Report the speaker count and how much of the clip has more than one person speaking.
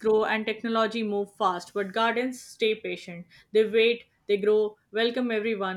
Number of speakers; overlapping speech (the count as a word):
one, no overlap